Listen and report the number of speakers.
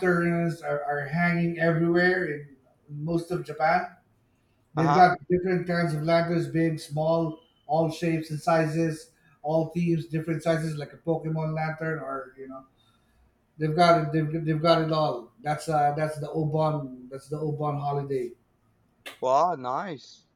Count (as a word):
two